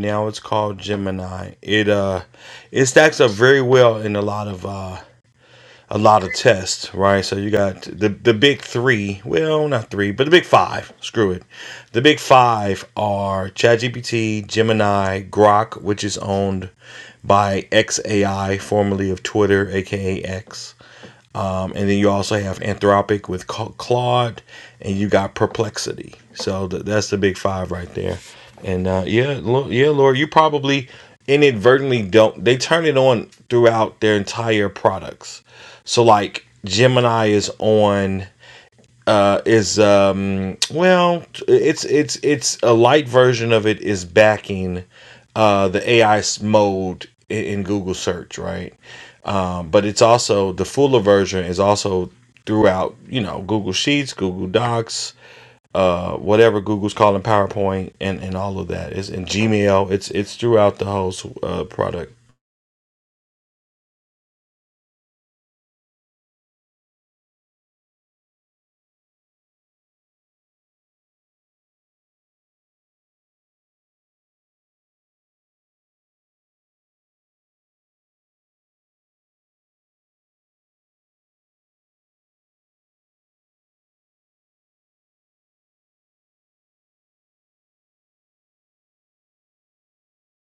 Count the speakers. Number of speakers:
1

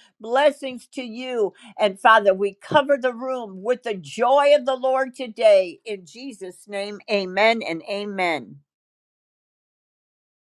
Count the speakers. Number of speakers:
1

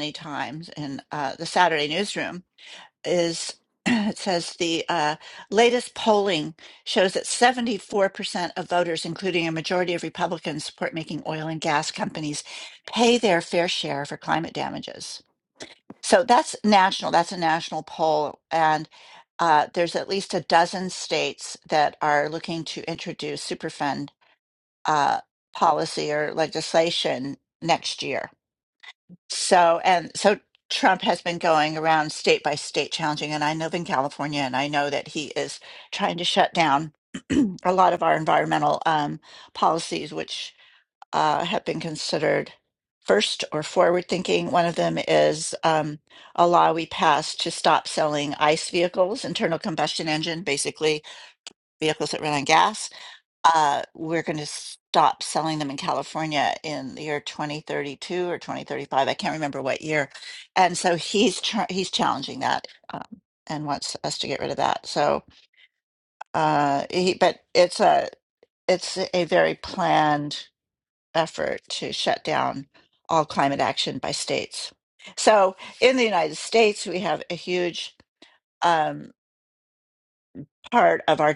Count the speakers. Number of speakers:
1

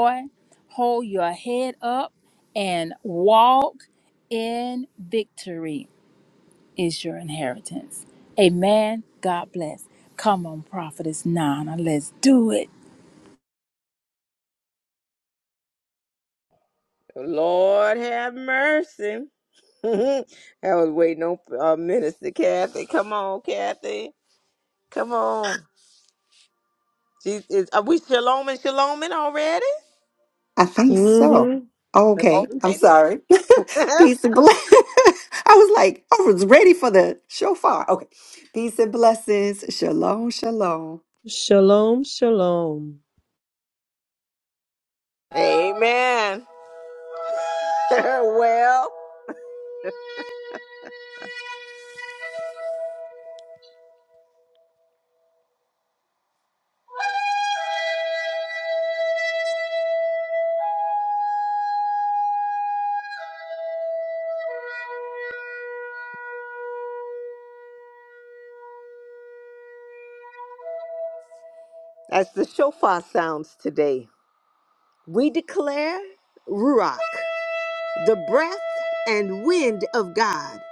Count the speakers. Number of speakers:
4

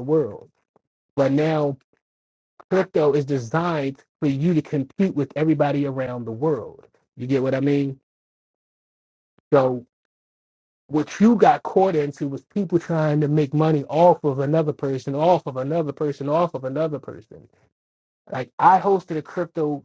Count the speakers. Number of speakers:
1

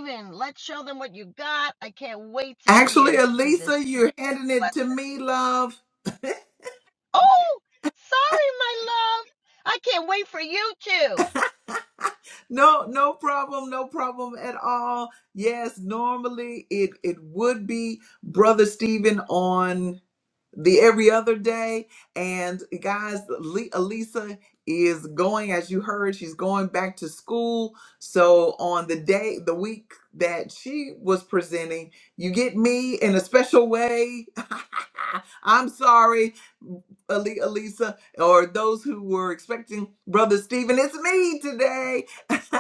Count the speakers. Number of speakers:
2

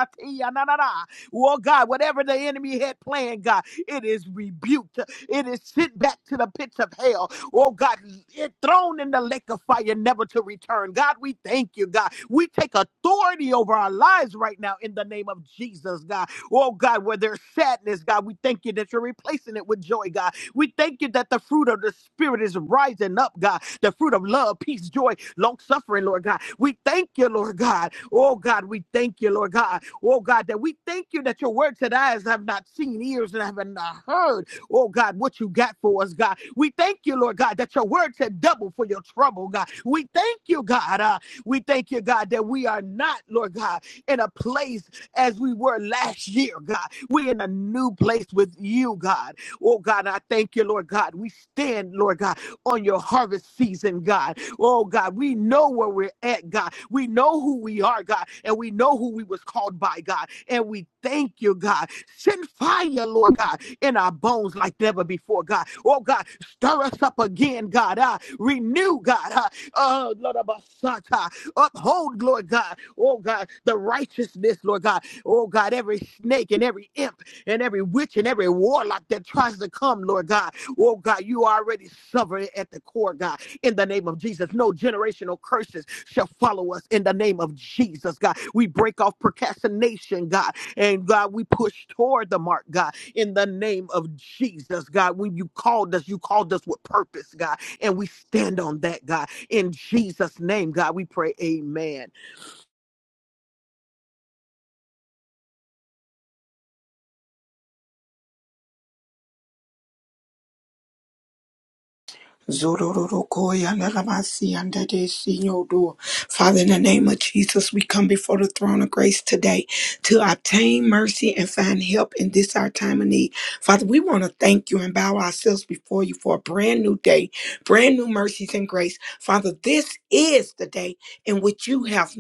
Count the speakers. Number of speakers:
2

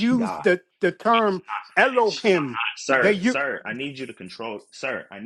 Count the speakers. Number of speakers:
2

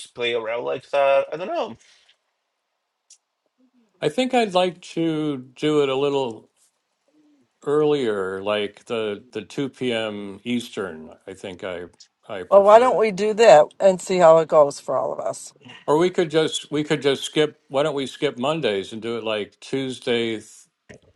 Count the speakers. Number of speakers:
3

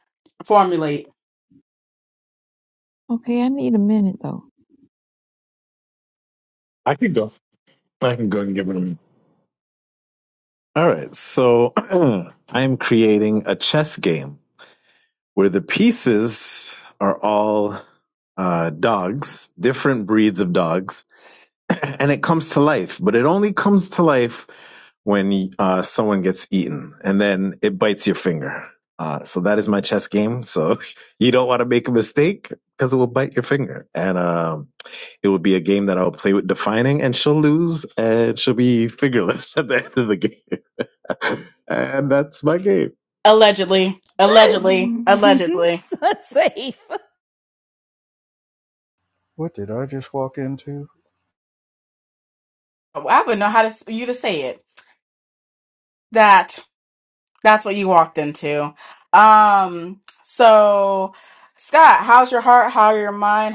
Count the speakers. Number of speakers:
5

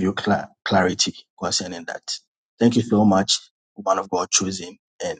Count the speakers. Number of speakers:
1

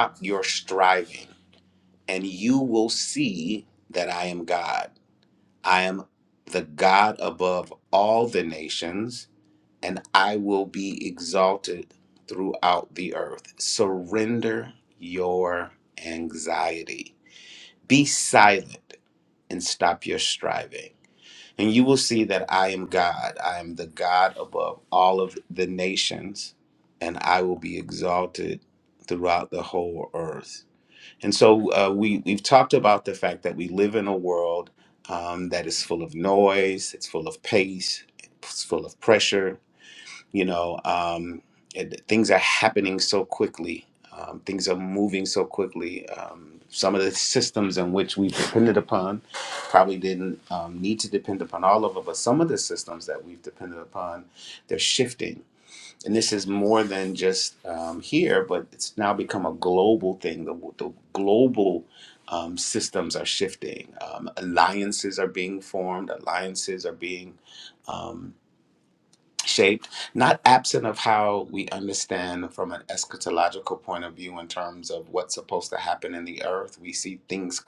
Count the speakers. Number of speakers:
1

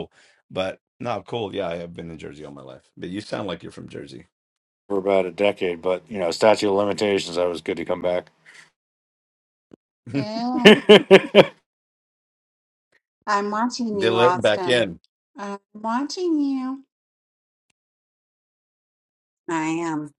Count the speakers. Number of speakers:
3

